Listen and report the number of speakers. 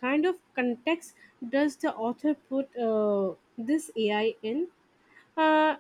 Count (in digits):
1